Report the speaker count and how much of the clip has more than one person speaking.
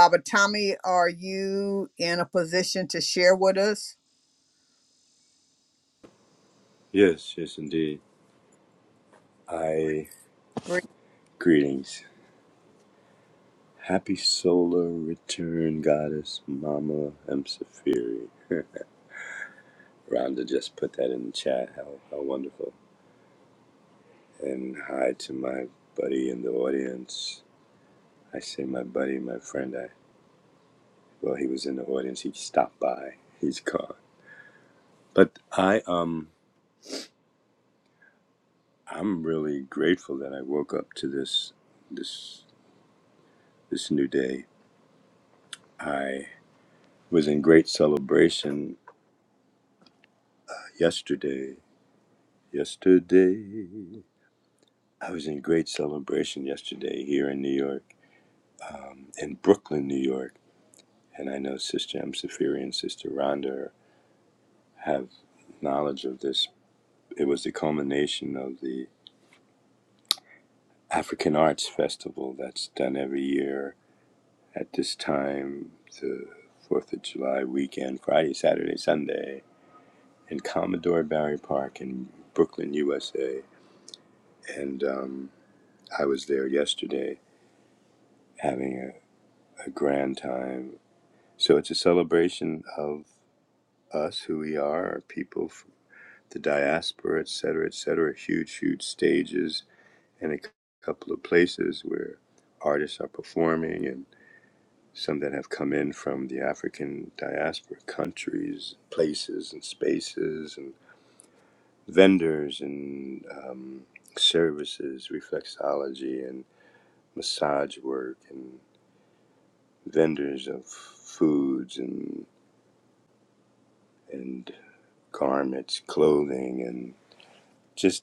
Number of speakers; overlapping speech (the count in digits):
2, no overlap